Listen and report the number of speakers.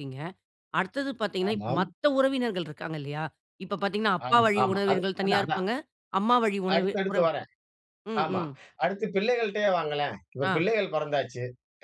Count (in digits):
2